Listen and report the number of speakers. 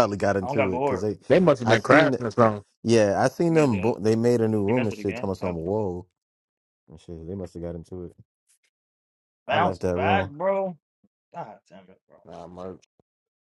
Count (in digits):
3